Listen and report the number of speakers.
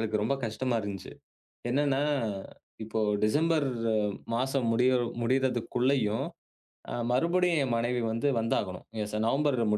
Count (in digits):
1